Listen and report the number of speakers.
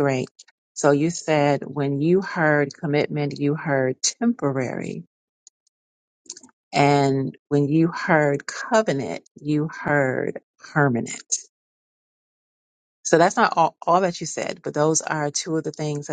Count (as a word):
one